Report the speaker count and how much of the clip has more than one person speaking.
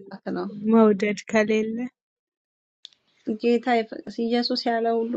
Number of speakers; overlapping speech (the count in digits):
2, no overlap